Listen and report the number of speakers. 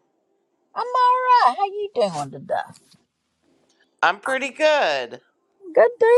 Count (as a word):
two